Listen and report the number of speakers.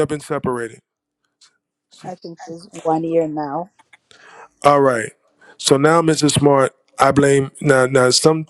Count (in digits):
2